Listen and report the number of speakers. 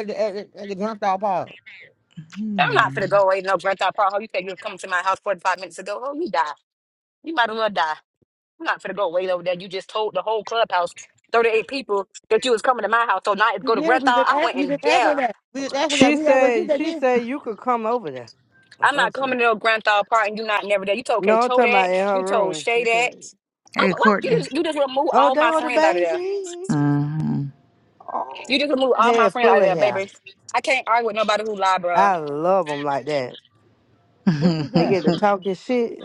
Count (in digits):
4